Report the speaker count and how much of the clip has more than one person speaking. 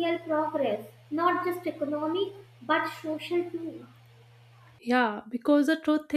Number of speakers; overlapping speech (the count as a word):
two, no overlap